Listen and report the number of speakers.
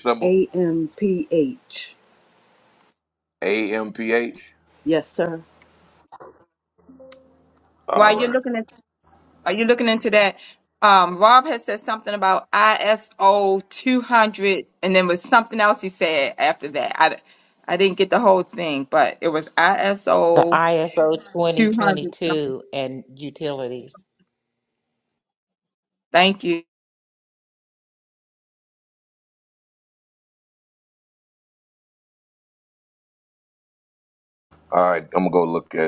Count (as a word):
four